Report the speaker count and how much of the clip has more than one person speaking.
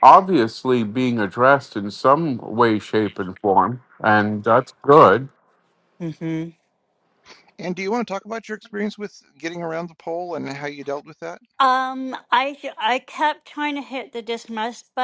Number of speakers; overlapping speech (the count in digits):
3, no overlap